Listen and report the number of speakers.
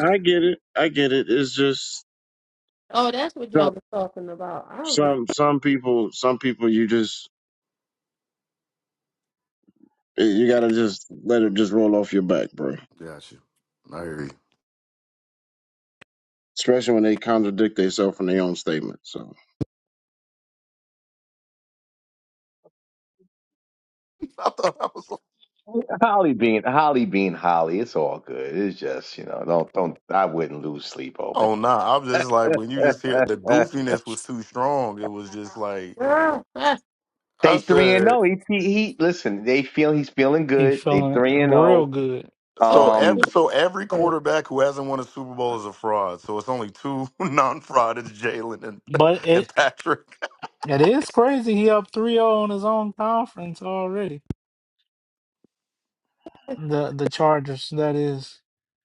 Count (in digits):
5